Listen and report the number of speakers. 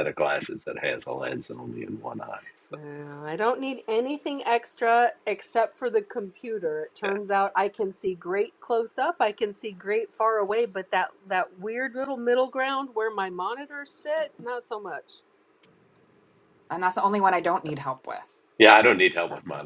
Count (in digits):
3